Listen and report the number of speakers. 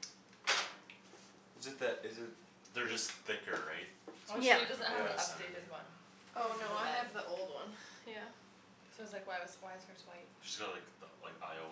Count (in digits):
4